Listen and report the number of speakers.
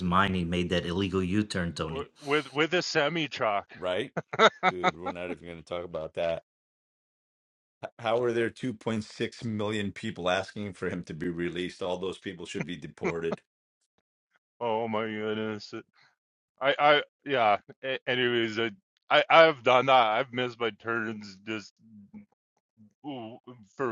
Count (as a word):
three